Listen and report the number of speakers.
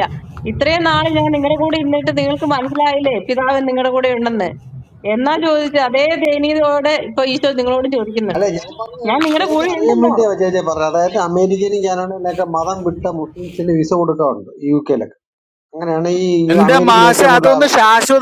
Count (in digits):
3